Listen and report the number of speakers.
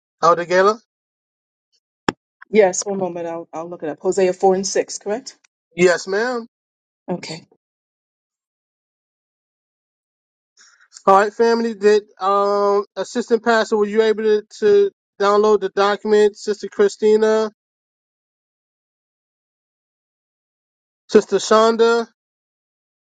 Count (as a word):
two